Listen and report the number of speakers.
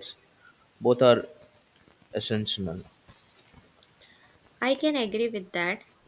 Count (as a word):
two